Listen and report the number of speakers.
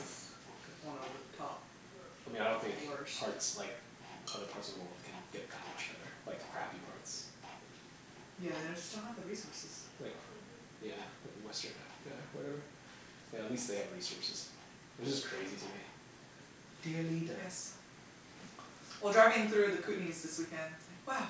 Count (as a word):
two